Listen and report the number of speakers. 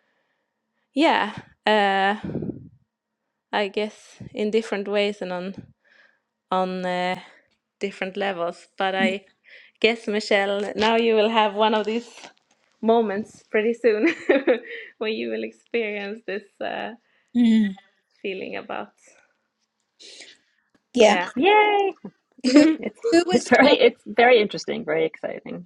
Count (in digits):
3